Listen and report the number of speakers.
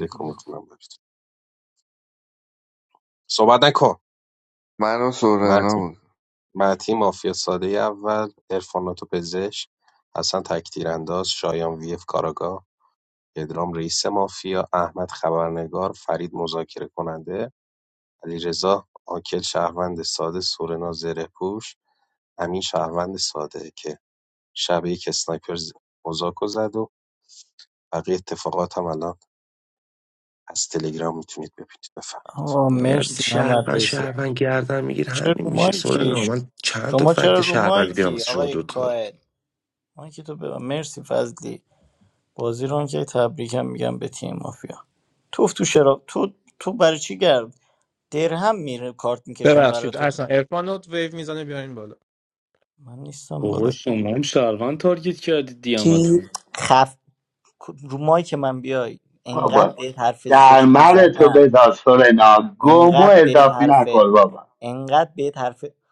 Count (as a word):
seven